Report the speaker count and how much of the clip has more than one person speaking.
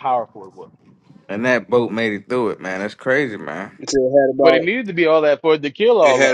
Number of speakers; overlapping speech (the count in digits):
3, about 9%